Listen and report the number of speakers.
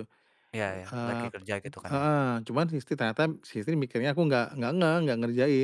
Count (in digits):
2